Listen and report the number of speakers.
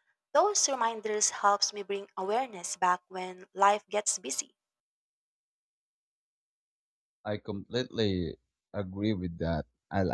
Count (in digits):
2